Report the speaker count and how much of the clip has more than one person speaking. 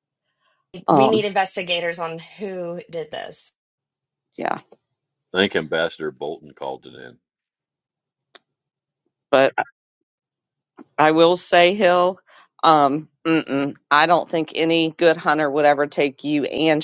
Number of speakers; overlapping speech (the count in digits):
3, about 2%